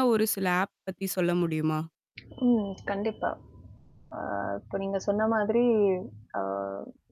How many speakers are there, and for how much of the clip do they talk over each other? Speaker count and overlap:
two, no overlap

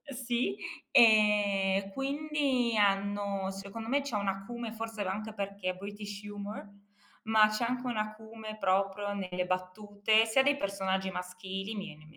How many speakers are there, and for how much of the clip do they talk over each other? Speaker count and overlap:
one, no overlap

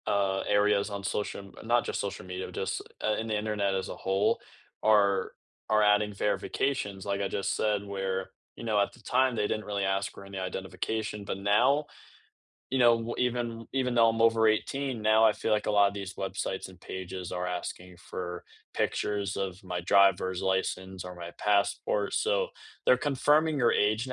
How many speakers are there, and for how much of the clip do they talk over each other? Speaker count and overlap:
one, no overlap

